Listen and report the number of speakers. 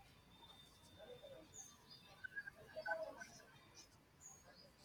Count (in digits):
0